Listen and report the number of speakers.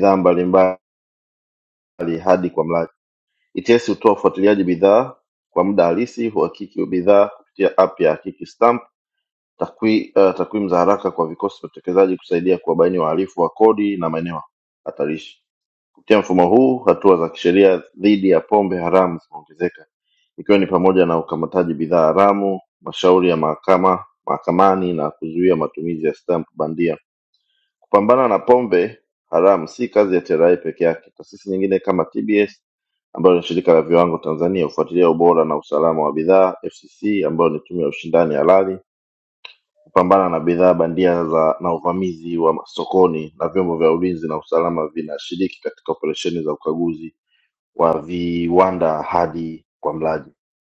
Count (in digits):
1